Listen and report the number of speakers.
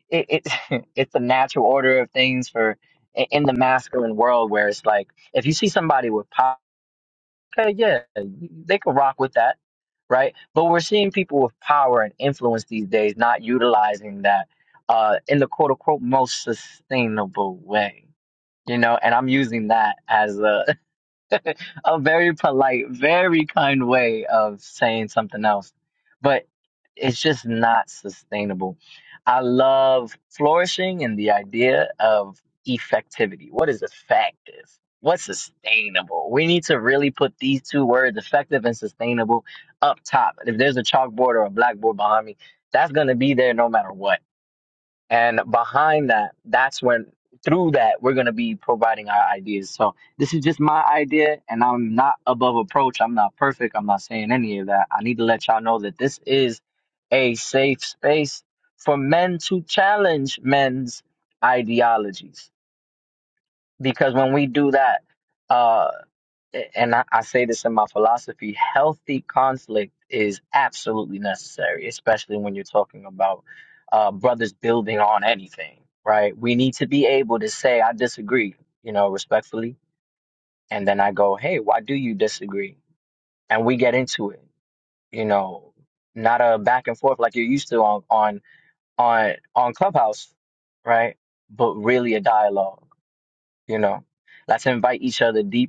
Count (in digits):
1